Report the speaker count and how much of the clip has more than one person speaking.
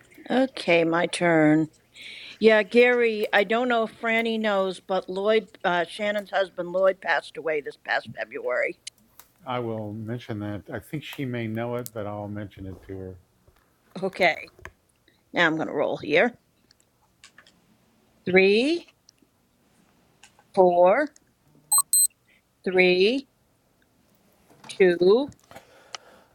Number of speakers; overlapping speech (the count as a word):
two, no overlap